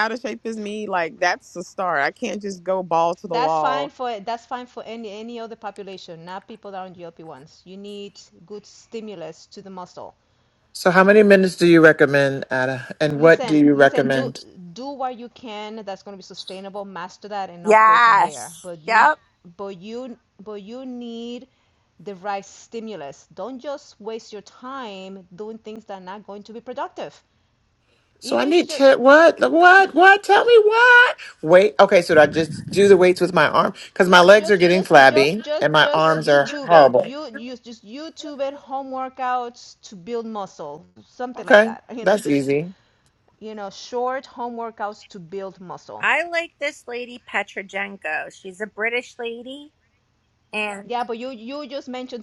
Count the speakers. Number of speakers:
four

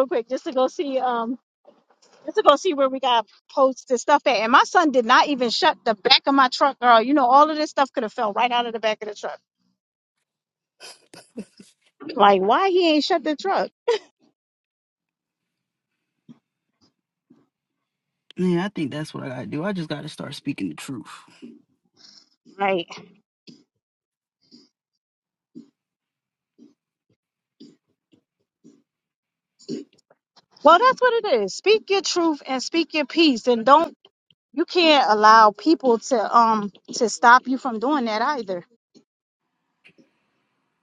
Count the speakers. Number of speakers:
two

